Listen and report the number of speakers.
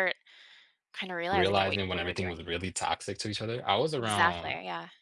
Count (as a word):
two